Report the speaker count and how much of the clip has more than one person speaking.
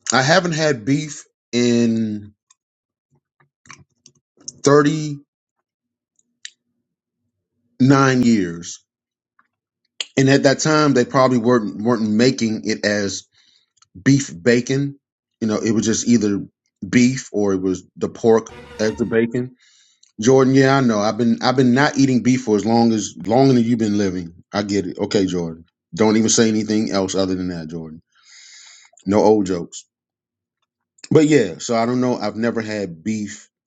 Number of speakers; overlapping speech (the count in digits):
1, no overlap